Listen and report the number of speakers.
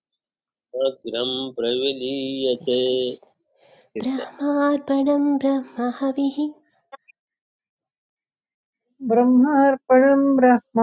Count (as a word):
three